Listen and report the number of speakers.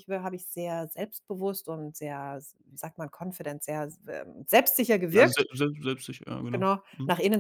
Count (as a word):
two